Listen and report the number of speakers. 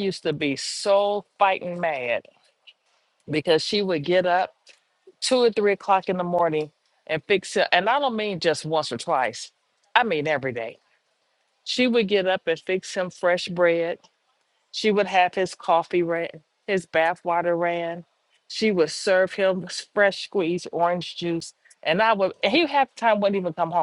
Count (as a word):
one